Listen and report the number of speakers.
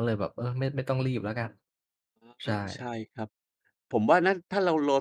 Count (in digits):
2